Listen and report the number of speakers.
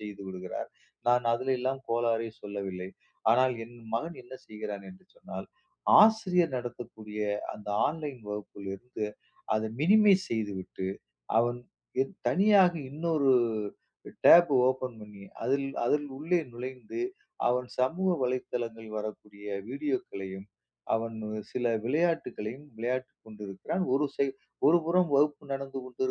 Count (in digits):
1